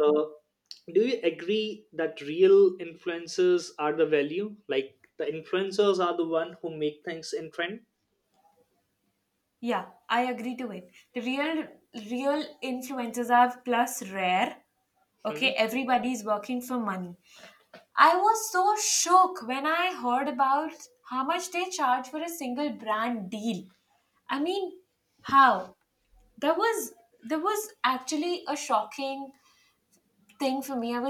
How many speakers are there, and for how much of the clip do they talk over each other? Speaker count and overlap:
two, about 1%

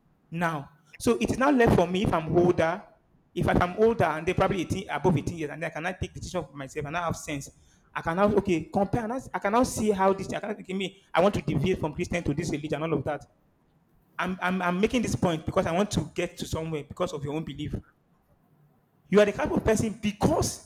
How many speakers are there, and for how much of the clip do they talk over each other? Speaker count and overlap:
one, no overlap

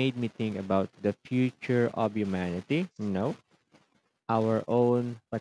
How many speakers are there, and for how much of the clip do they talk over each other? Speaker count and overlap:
one, no overlap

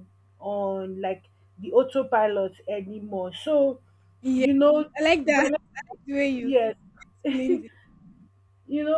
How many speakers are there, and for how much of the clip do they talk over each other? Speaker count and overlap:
two, about 5%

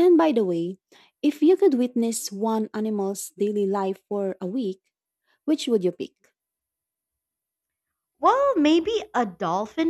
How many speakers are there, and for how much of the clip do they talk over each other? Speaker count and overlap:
two, no overlap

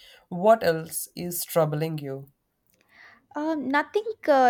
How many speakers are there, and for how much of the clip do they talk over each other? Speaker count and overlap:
two, no overlap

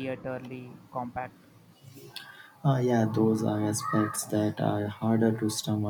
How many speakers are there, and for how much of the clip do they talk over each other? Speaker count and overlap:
two, no overlap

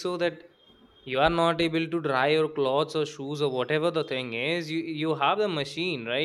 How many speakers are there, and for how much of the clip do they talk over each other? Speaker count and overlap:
one, no overlap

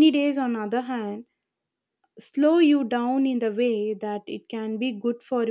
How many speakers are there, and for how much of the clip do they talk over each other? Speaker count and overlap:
one, no overlap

